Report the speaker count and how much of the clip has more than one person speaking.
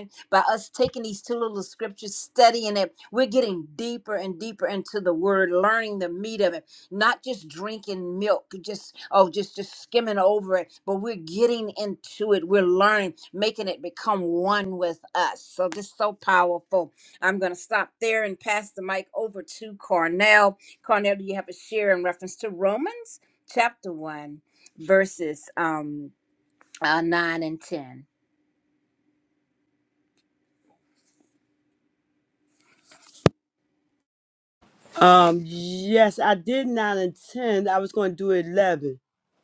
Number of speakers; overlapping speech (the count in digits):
2, no overlap